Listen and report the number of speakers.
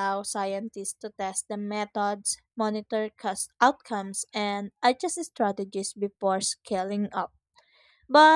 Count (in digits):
1